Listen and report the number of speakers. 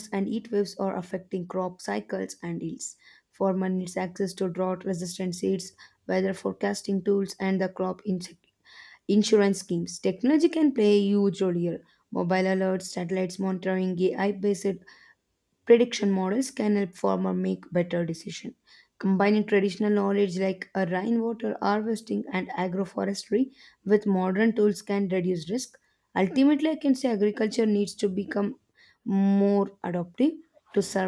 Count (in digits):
1